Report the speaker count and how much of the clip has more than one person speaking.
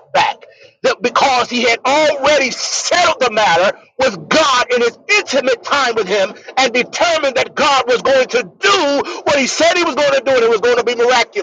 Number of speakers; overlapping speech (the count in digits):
1, no overlap